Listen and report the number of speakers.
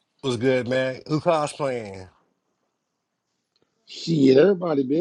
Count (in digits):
2